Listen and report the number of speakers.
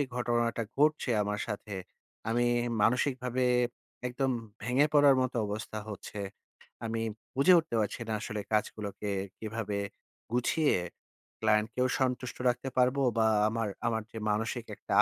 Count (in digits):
1